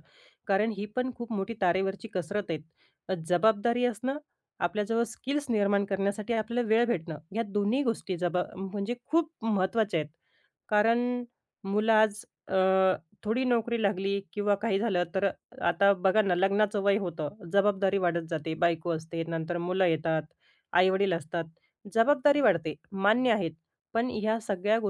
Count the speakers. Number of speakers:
one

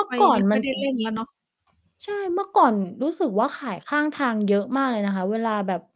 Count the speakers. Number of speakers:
two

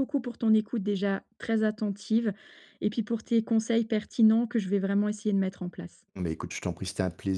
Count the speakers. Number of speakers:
two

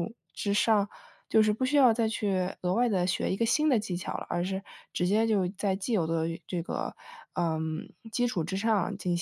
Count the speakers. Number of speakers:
one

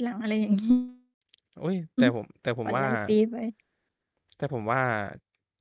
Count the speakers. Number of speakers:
two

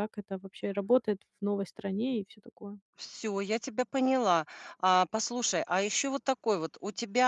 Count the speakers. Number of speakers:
two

